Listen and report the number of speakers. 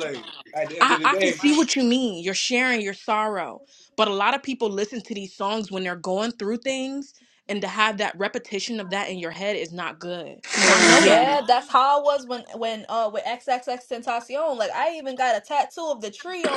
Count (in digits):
3